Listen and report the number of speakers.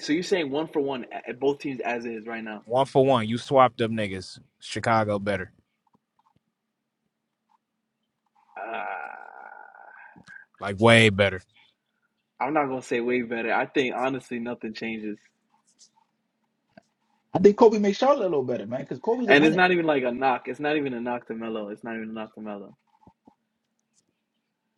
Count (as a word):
three